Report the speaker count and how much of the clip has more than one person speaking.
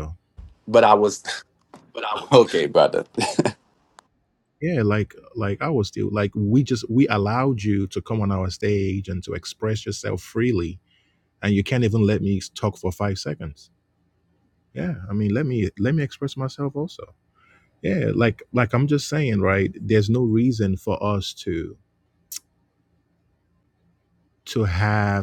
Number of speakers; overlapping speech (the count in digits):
2, no overlap